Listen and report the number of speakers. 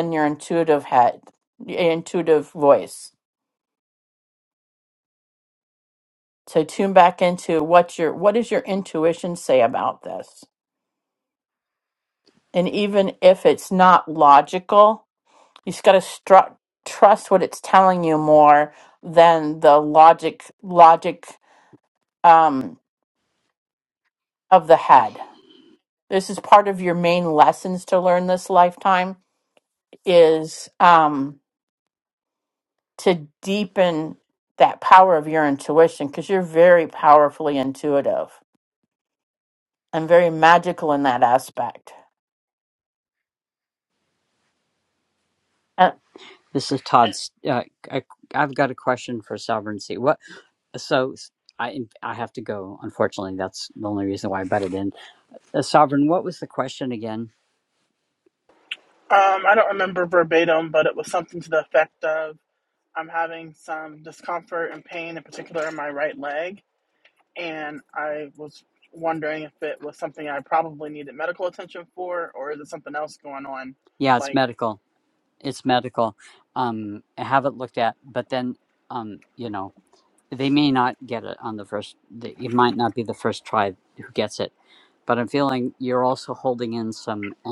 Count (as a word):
three